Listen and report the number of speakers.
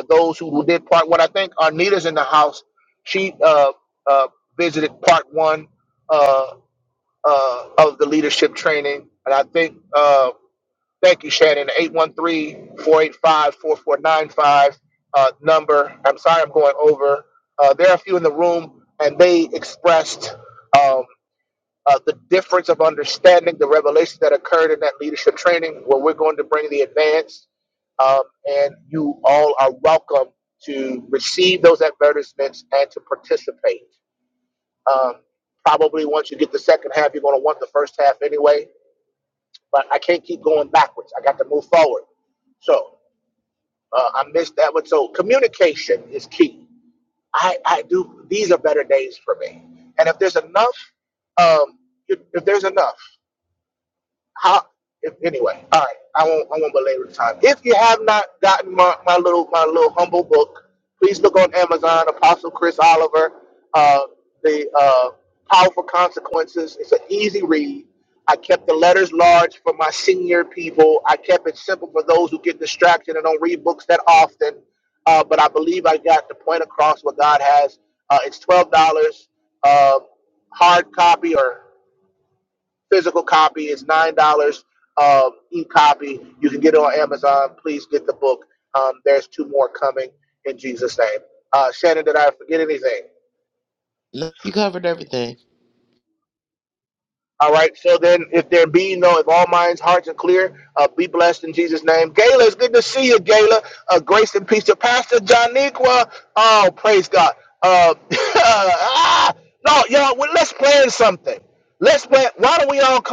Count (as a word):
two